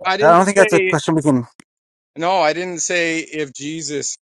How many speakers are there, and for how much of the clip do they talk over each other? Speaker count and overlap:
2, about 24%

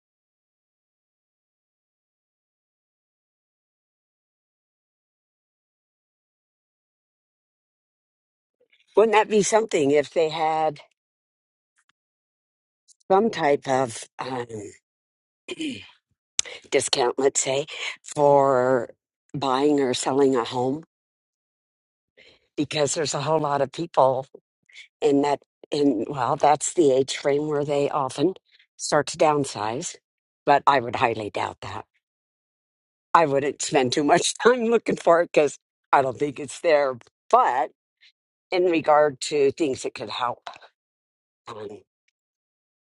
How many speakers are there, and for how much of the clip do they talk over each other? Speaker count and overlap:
1, no overlap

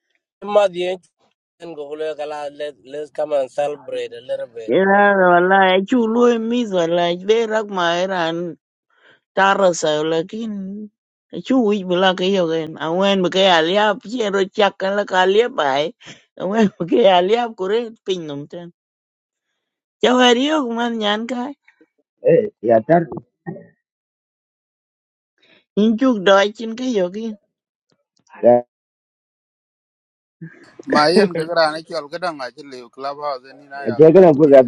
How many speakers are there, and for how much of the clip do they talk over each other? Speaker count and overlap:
4, about 3%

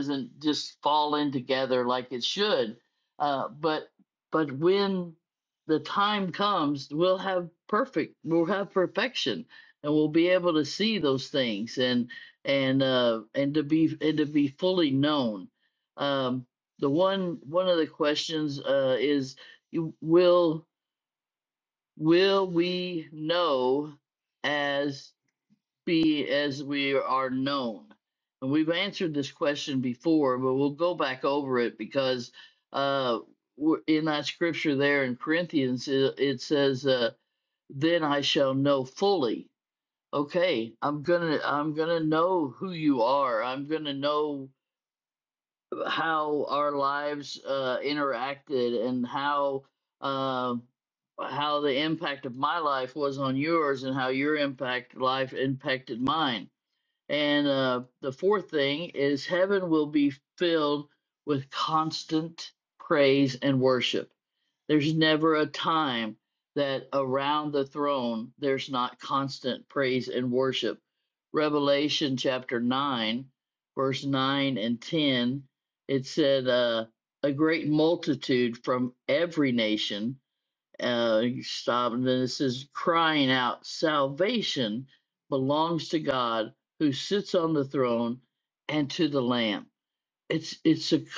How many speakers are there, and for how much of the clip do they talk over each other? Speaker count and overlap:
1, no overlap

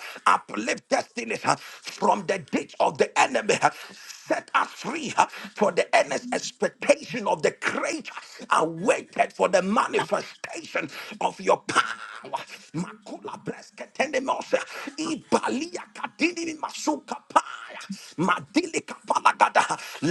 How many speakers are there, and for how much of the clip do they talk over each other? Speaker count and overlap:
1, no overlap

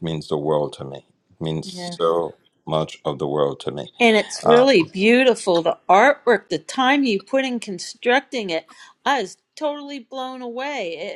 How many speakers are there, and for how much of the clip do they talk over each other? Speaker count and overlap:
2, about 5%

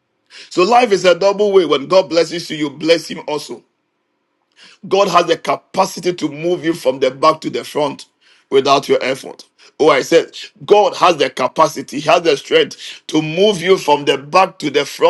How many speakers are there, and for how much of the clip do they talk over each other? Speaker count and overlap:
1, no overlap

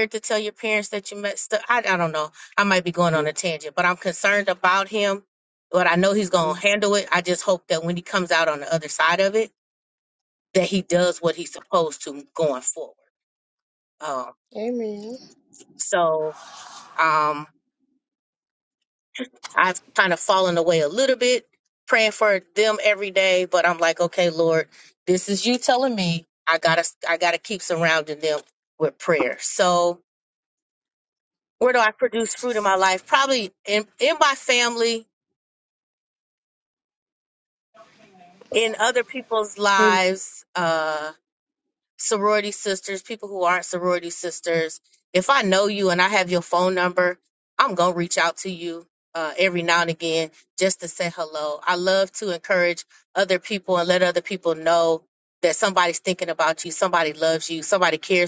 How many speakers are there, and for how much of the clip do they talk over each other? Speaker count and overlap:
2, about 1%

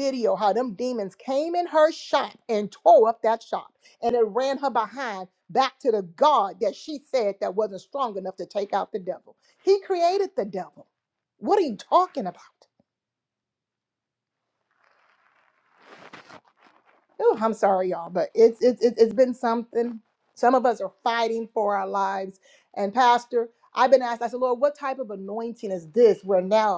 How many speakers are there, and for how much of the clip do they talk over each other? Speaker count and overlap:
1, no overlap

